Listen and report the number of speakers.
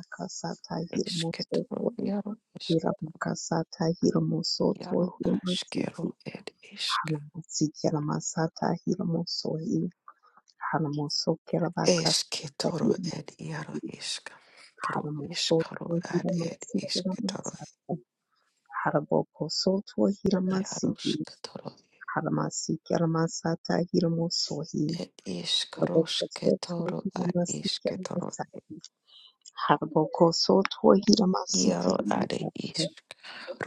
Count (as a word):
two